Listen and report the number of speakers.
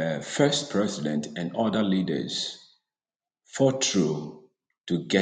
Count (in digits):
1